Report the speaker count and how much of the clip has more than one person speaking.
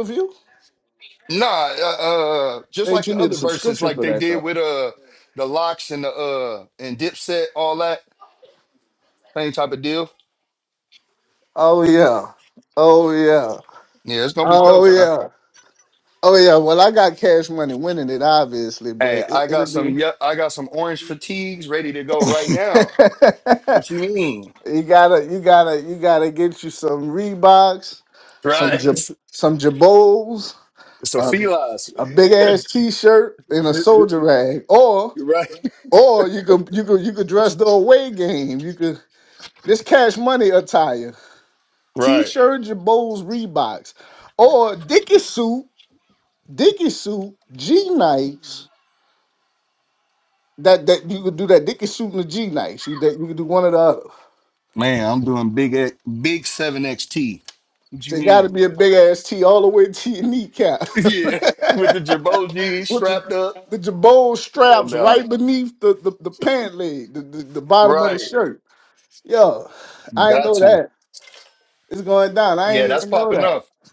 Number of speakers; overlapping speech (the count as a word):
two, about 10%